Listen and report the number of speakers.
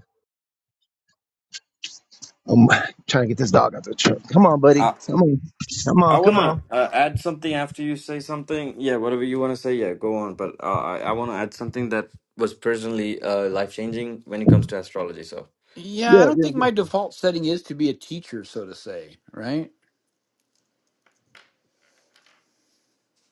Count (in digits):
3